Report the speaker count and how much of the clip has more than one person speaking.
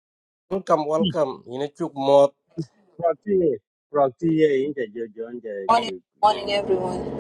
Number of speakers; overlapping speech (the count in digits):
3, under 1%